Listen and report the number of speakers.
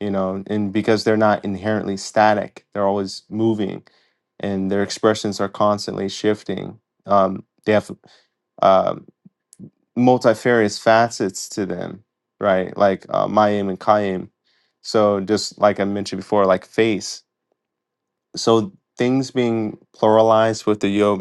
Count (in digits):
1